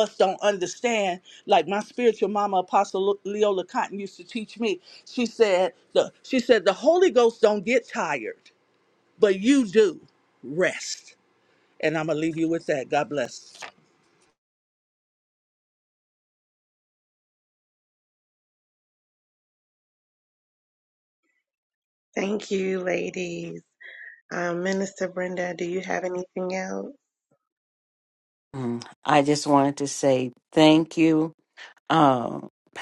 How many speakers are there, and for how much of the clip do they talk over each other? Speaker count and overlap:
three, no overlap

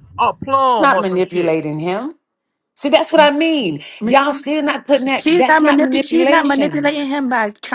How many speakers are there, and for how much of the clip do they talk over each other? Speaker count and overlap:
three, about 33%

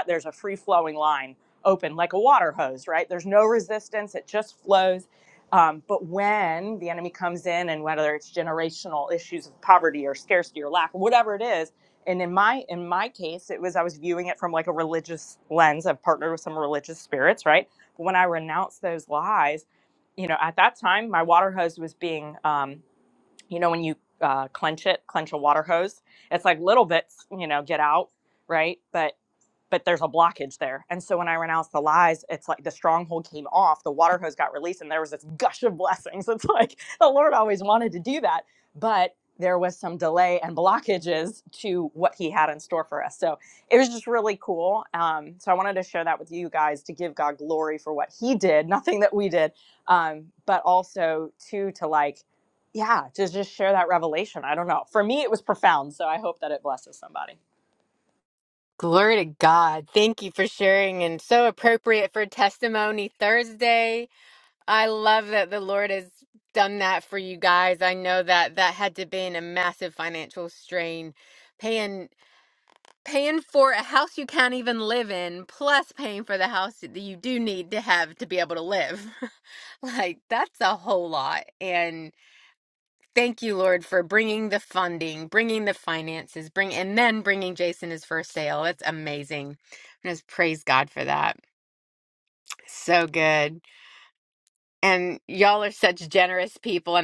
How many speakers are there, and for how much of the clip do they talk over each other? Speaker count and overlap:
two, no overlap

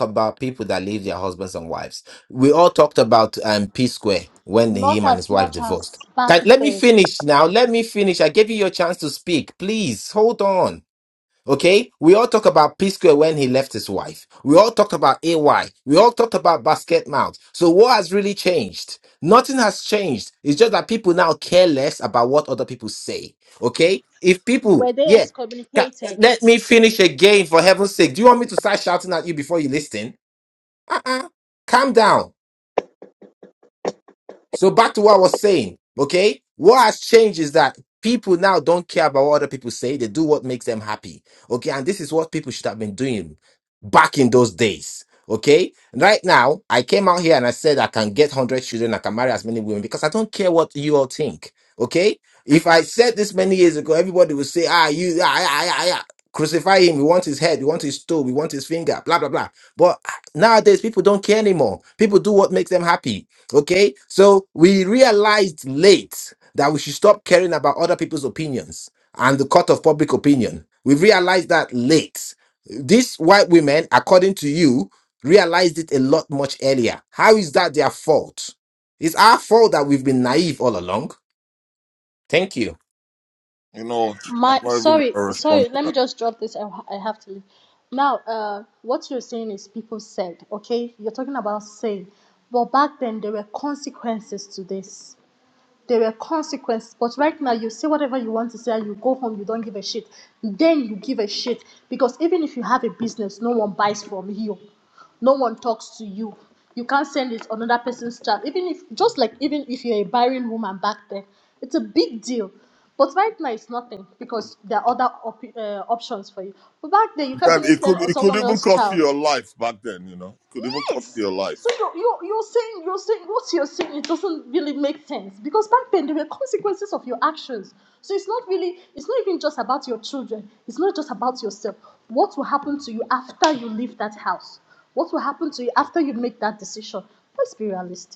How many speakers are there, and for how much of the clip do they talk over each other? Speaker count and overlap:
three, about 4%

